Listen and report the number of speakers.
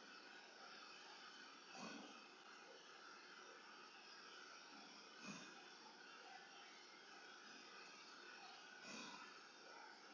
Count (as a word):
zero